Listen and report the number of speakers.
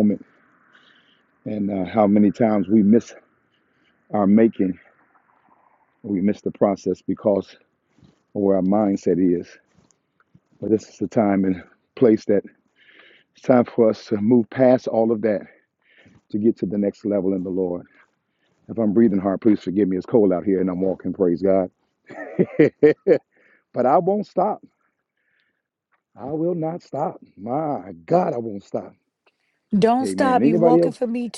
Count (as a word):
two